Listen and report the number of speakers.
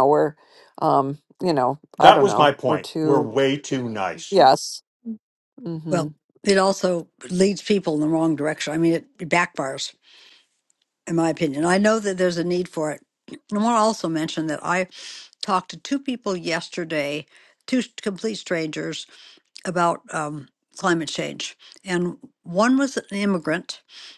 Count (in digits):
3